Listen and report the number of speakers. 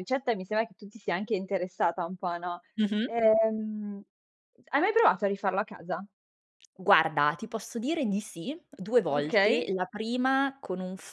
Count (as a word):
two